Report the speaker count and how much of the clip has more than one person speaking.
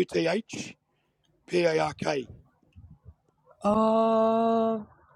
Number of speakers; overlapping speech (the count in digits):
2, no overlap